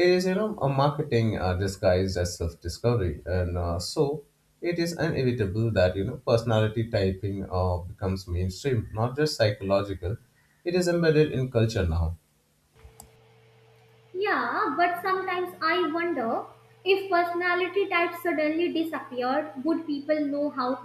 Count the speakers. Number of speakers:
2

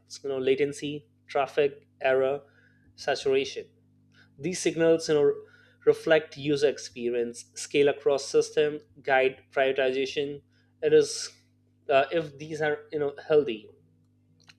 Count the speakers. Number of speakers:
1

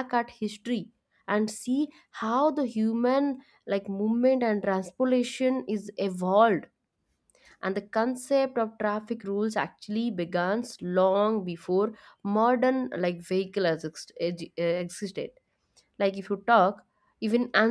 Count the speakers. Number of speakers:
1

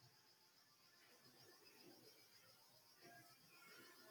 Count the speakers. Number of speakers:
0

